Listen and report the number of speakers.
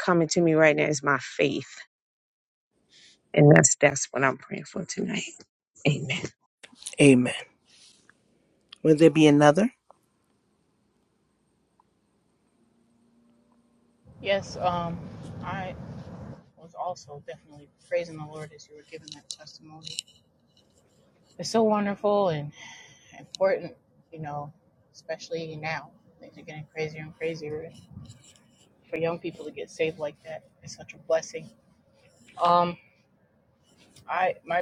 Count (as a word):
three